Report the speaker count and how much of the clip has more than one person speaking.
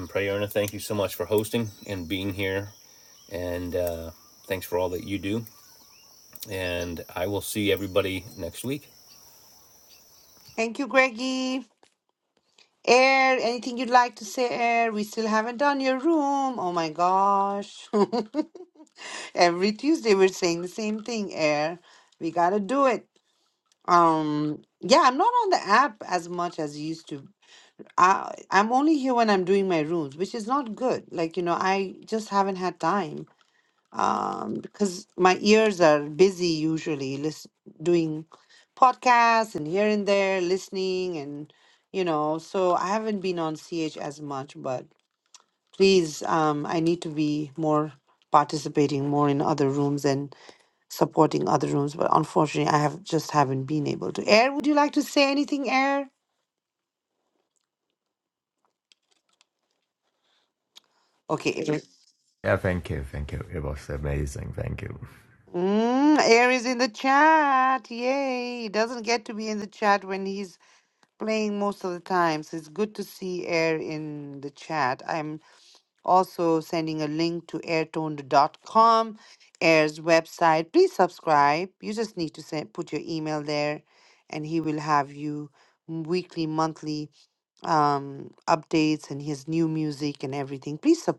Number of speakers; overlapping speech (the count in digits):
3, no overlap